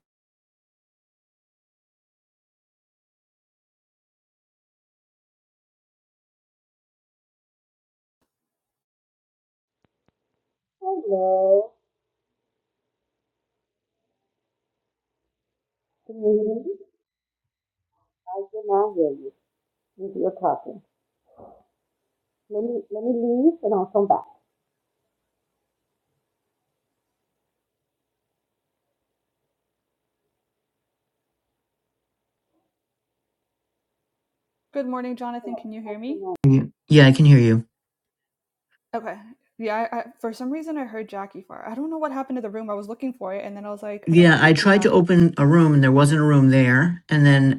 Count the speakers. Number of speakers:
three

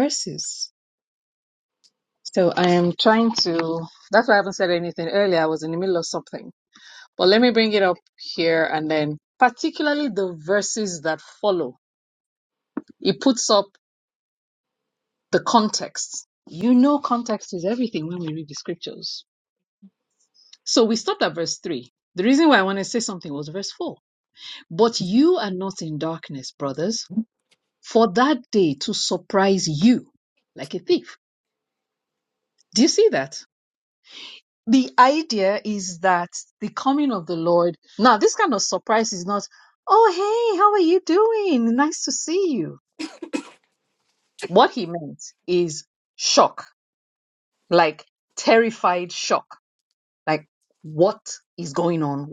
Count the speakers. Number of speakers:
one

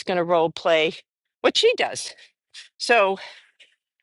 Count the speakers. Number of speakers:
one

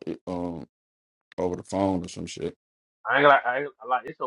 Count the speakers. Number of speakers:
two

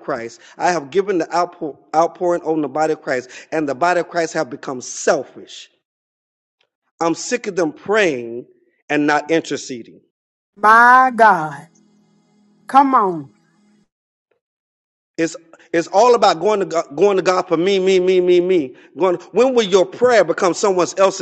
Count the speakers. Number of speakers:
two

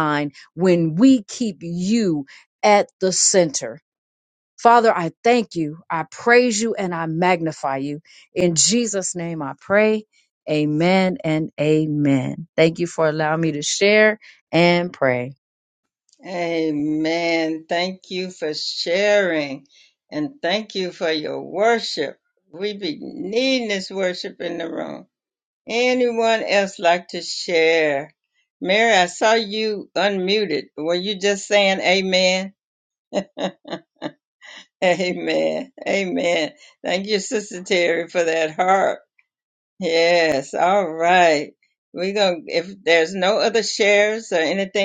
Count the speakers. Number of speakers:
two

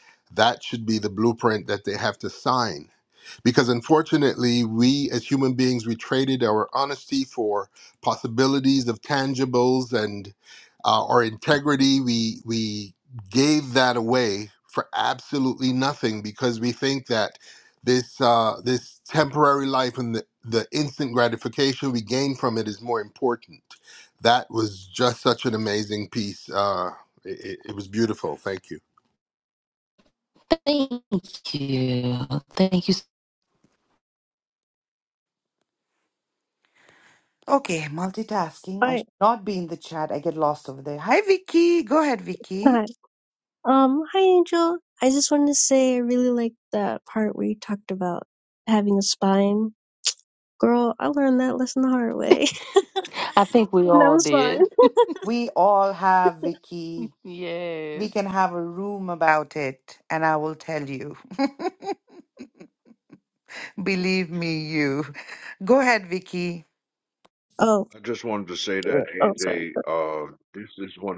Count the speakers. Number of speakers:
five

